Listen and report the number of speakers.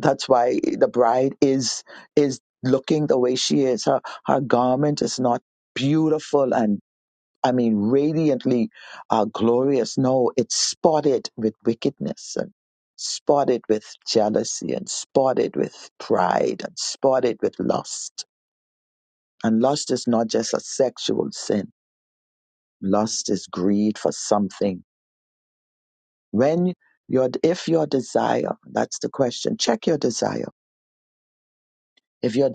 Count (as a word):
one